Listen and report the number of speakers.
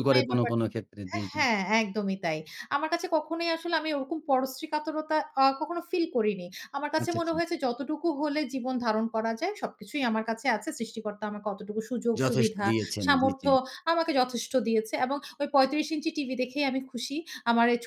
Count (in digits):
2